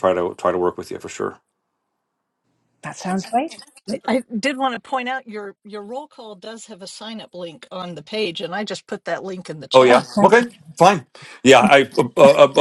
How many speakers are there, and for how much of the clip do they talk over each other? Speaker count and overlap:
three, about 6%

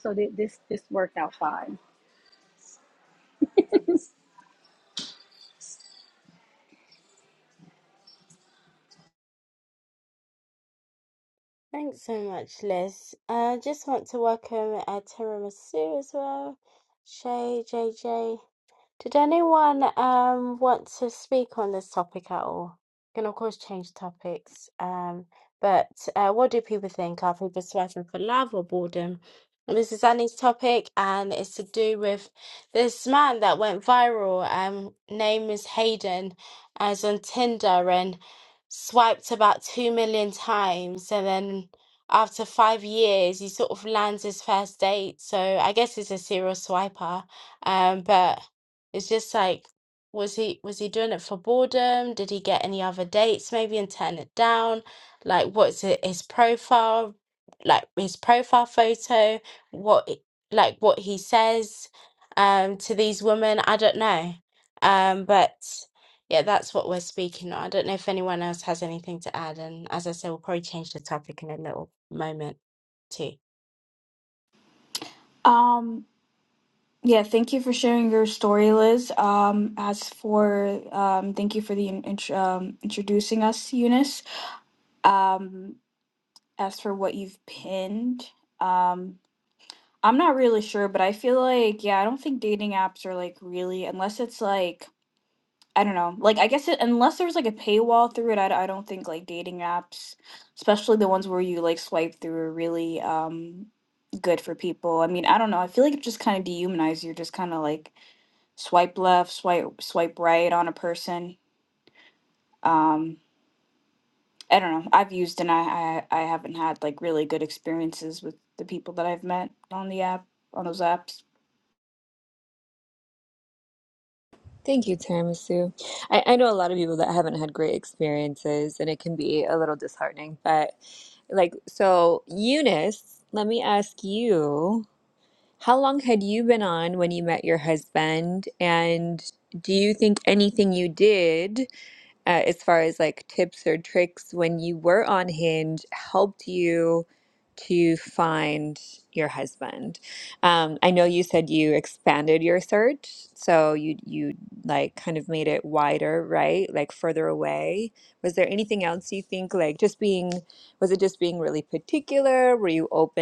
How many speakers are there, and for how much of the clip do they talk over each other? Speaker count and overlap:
four, no overlap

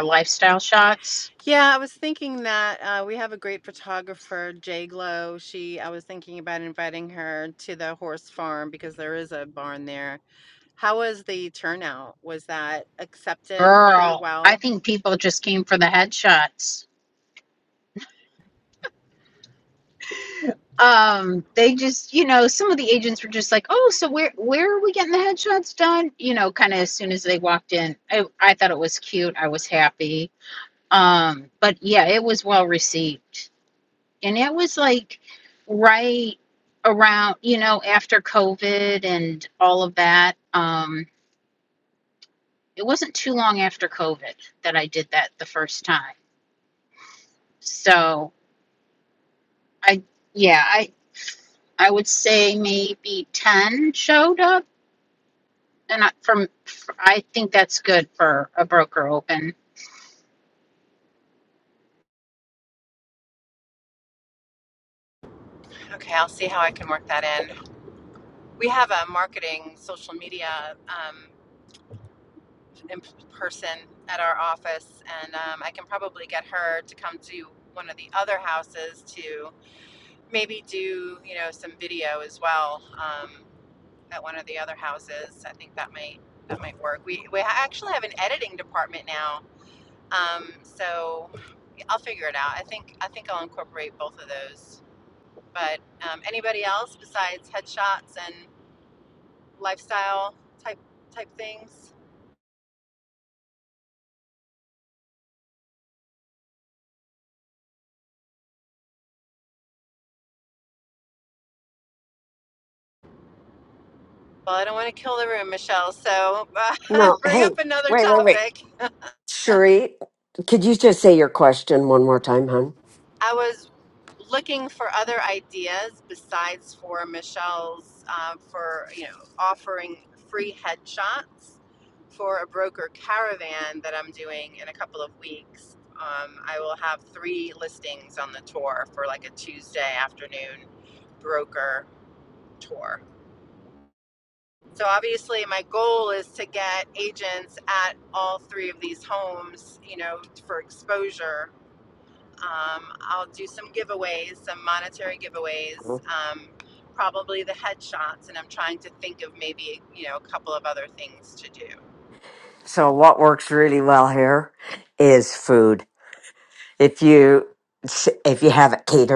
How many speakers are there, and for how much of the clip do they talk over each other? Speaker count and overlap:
three, about 1%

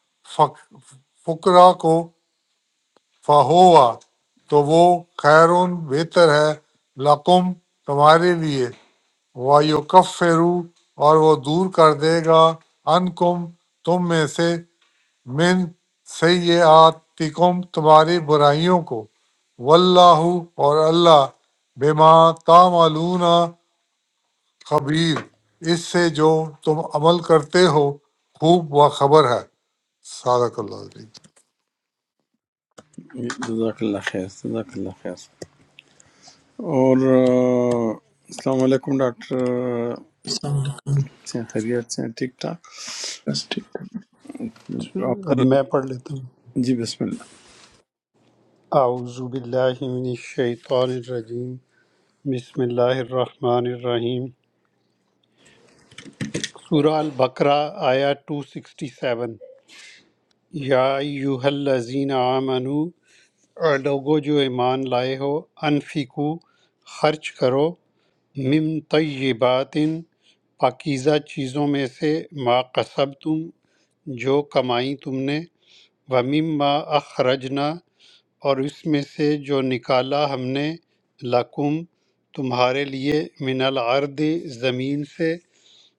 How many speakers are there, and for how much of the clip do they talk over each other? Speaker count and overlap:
four, under 1%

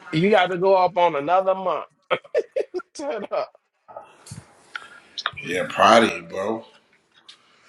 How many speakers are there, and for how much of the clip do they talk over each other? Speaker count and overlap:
two, no overlap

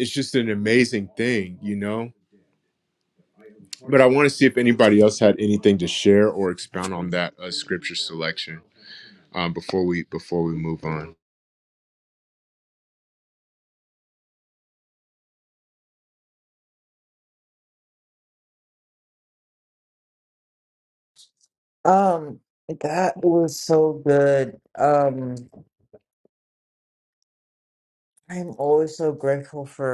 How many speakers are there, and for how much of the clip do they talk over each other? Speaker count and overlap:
two, no overlap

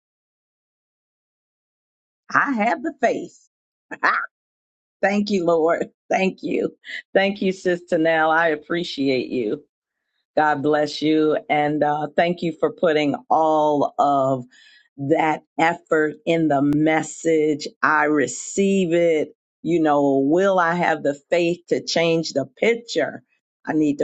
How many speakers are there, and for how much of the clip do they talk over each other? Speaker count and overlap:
one, no overlap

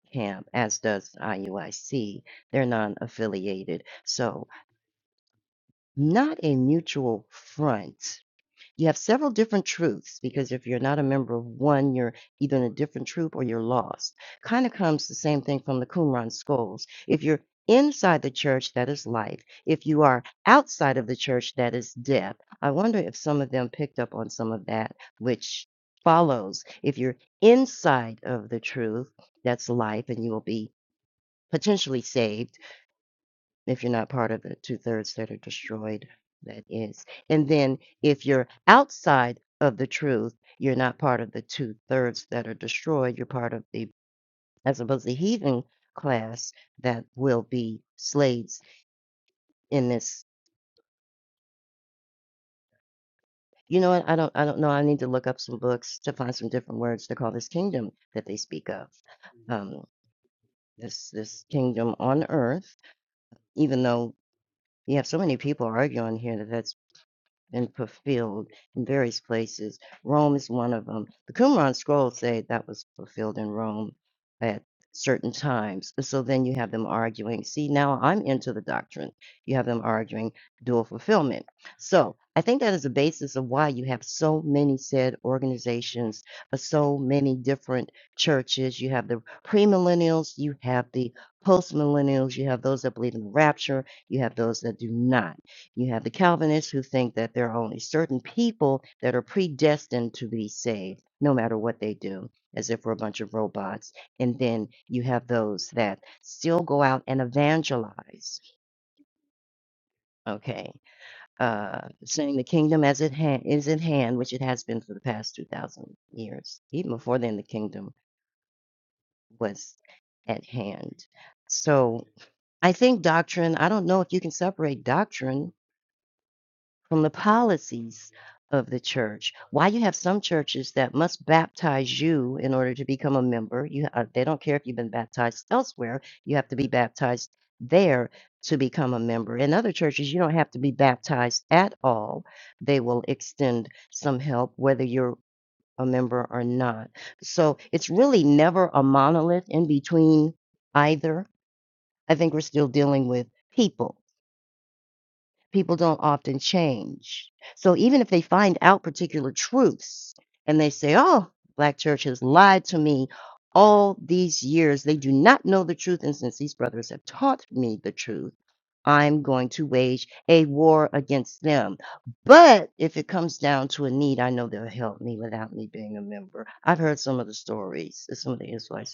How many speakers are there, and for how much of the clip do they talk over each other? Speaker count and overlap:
one, no overlap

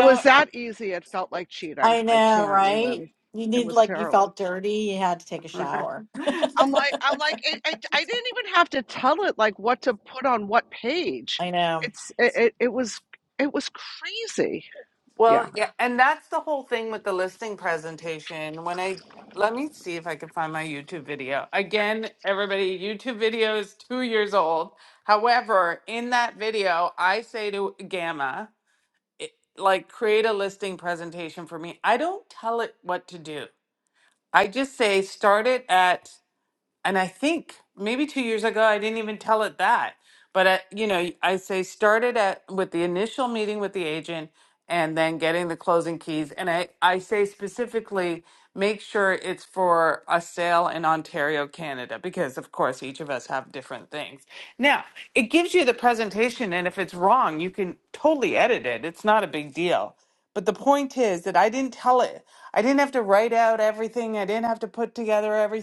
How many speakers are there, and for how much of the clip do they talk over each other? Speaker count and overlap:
three, about 4%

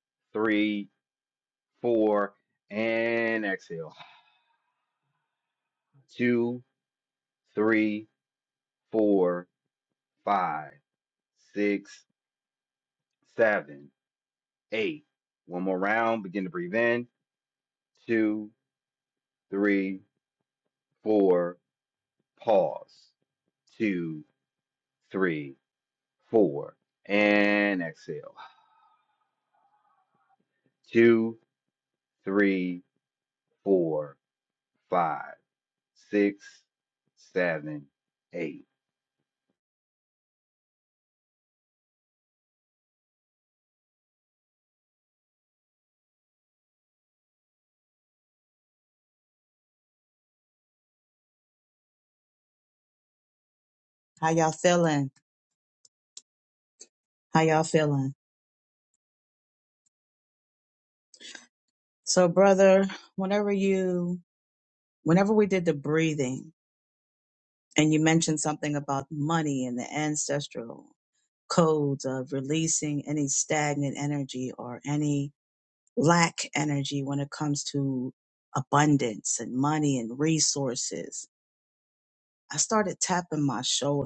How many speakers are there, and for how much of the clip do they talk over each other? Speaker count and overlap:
two, no overlap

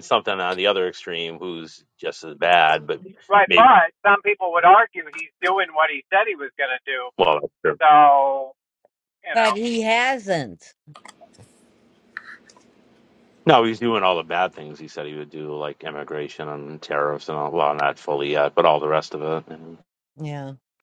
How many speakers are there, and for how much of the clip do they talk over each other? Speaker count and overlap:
three, about 2%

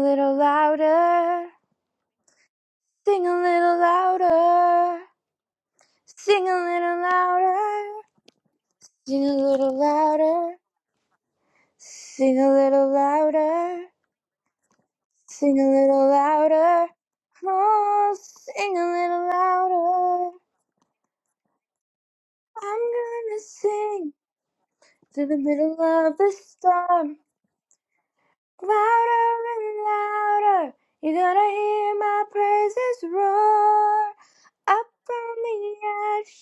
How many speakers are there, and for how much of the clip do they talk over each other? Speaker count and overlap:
one, no overlap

